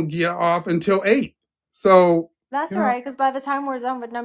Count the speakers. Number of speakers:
2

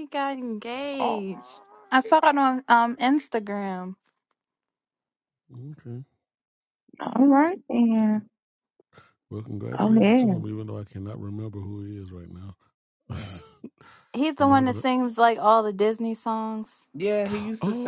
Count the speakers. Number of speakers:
4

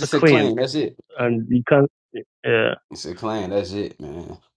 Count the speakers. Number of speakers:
2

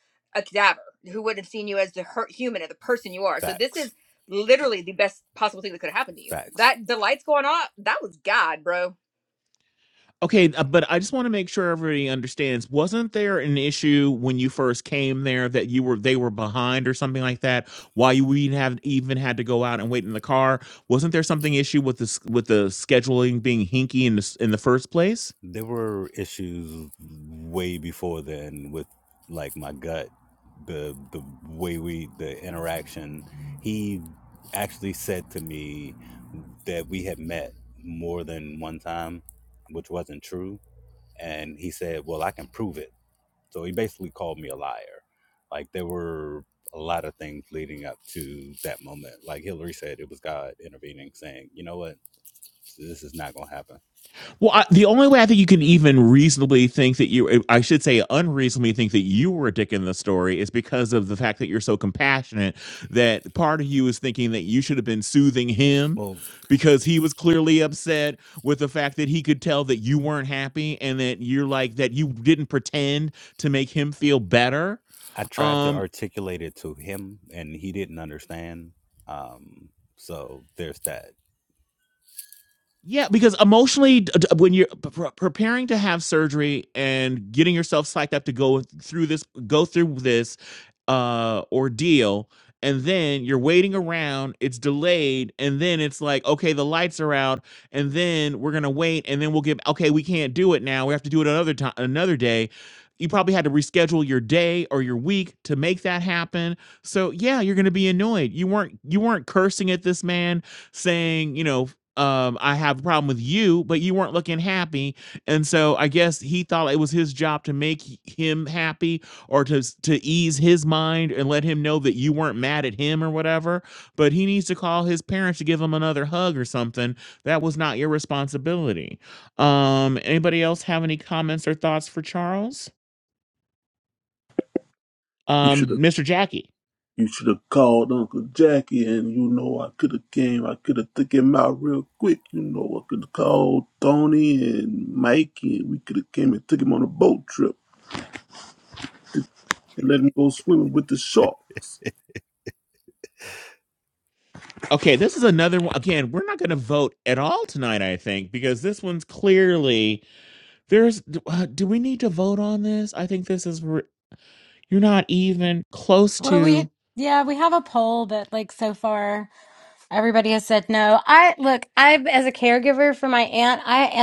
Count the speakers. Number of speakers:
5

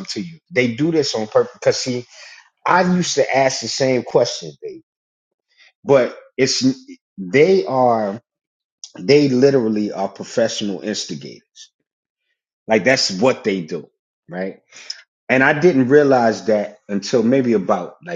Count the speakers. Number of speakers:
1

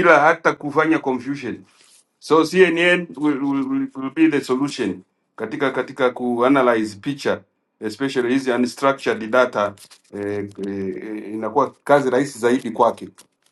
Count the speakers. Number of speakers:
1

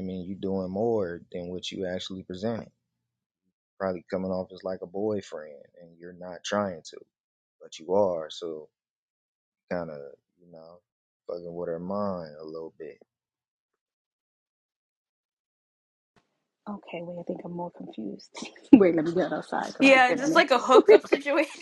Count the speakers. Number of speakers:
3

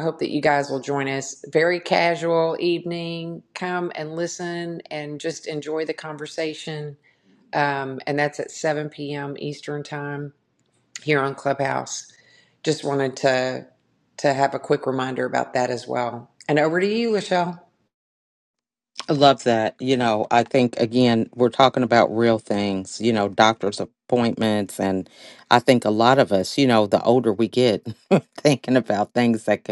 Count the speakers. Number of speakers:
2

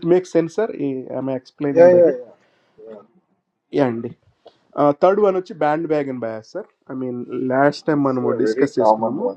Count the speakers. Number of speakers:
2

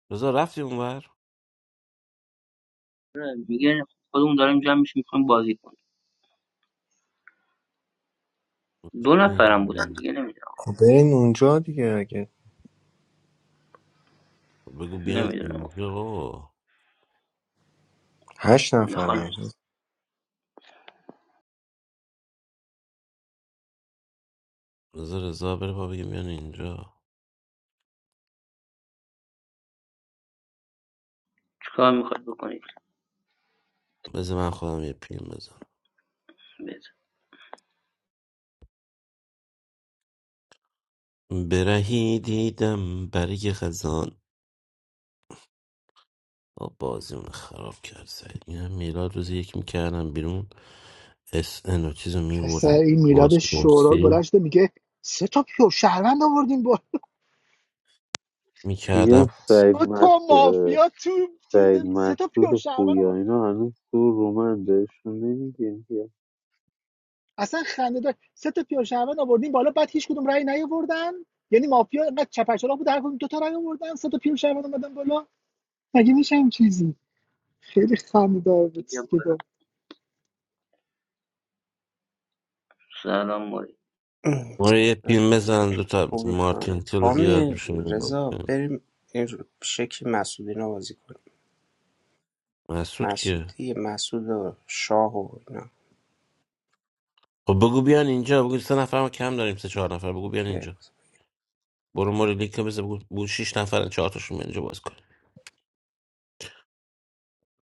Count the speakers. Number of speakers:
6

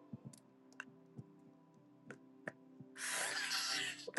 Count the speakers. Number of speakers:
0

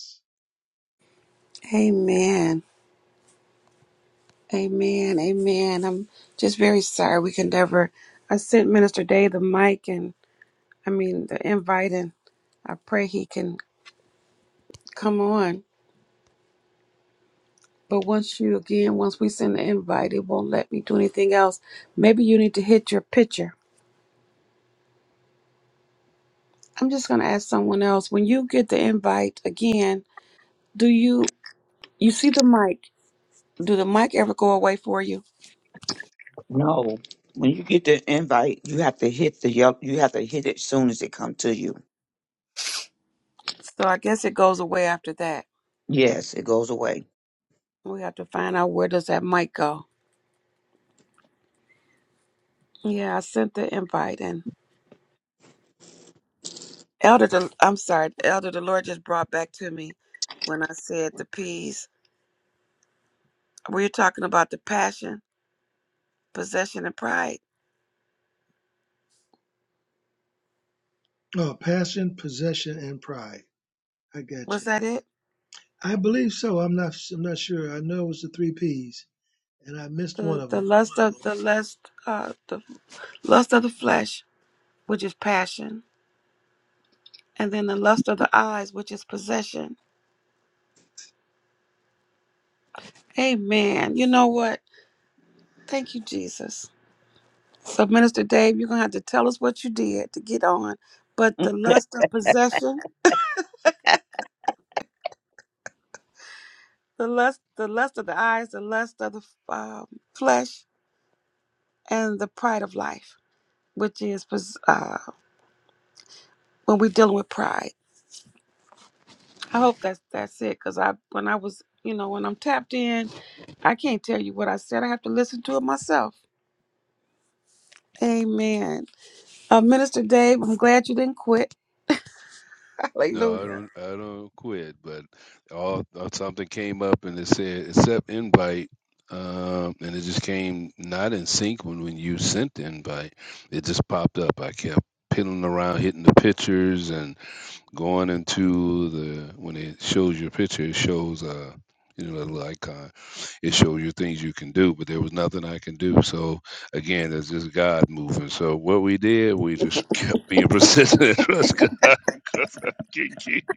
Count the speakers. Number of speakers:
4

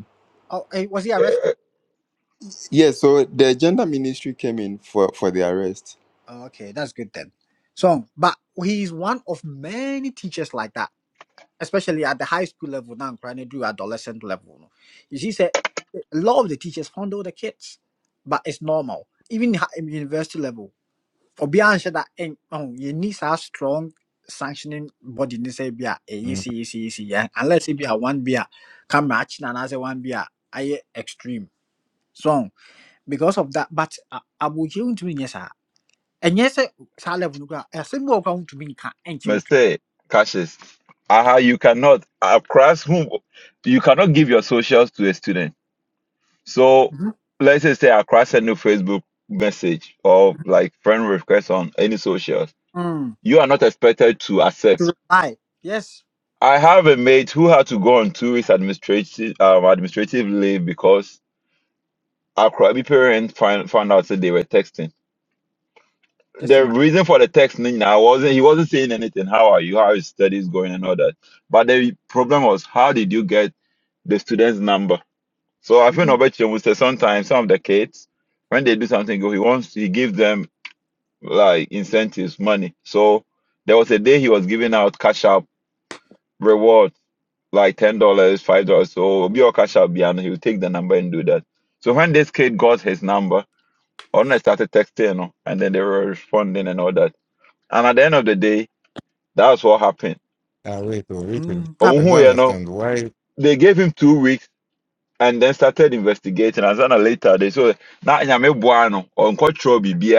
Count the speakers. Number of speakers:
4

